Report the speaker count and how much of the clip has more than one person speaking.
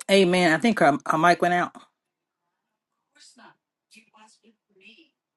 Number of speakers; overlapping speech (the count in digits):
1, no overlap